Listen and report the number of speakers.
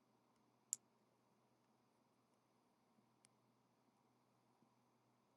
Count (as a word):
zero